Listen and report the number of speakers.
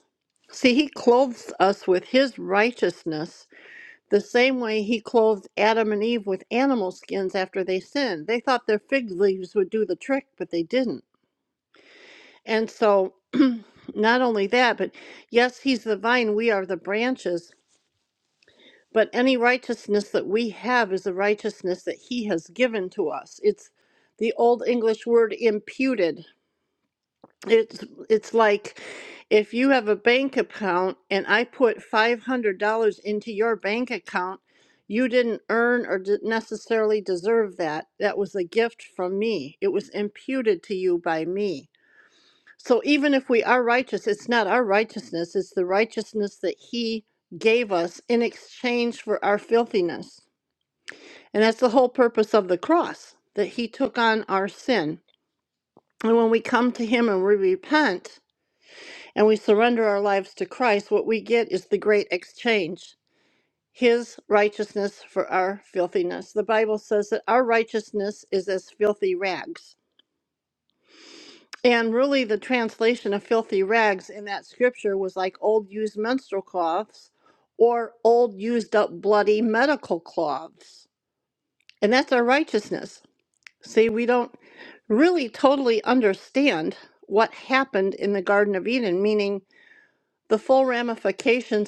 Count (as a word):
one